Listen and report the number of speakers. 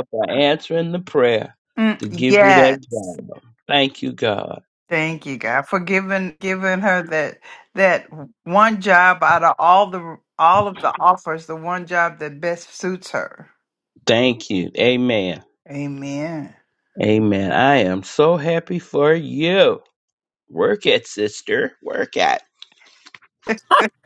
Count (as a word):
two